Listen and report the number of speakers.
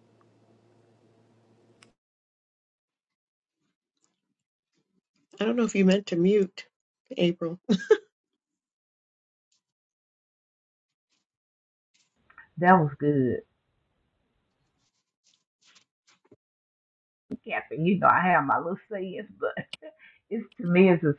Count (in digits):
2